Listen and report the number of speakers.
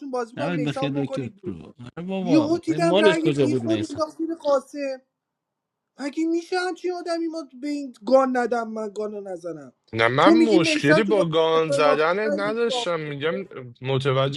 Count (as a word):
three